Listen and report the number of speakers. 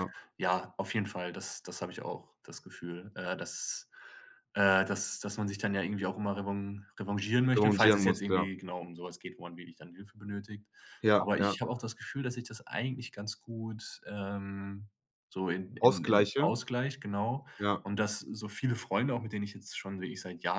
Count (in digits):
2